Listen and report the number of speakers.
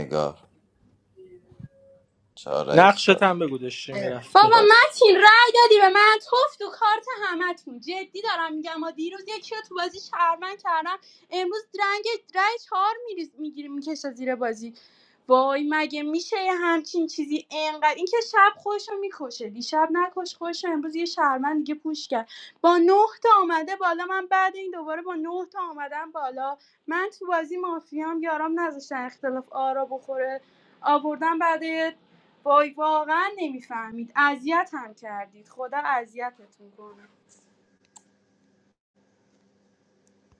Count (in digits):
3